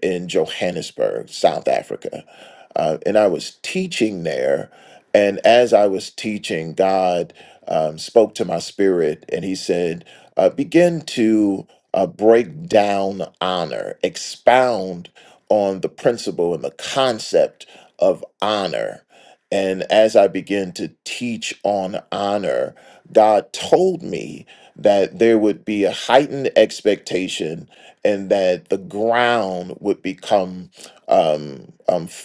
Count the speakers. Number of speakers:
1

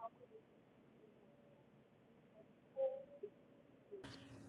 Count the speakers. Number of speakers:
0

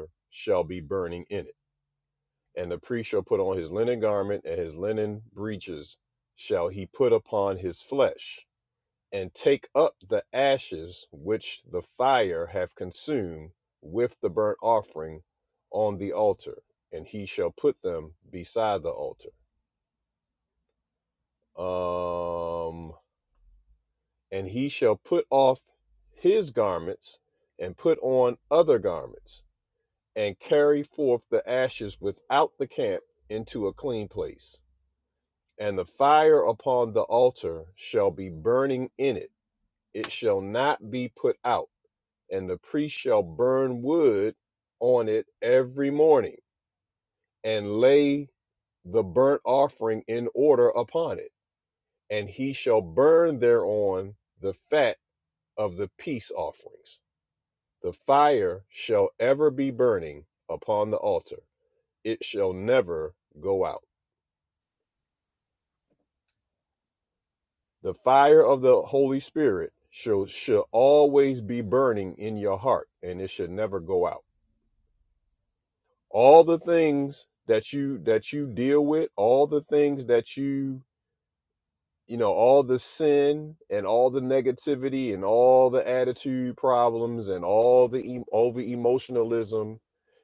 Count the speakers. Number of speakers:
1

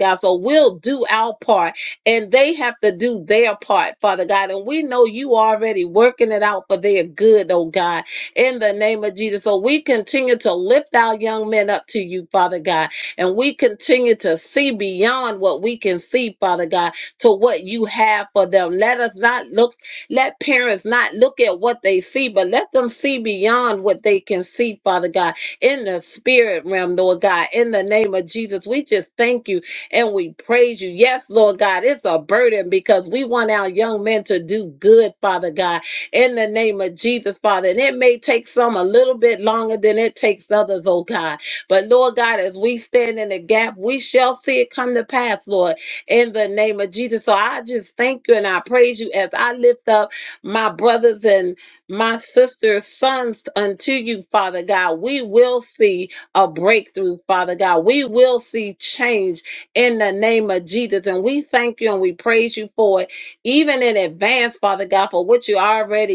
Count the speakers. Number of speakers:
1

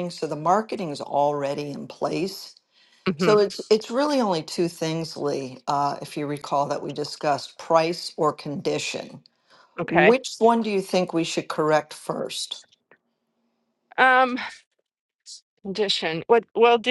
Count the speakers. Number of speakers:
2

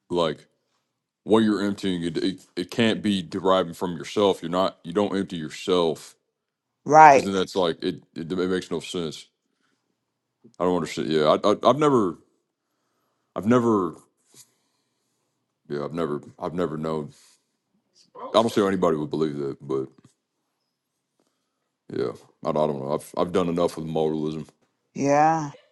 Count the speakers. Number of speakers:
2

